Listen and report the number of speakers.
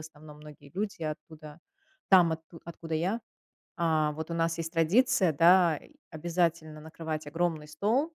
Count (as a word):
one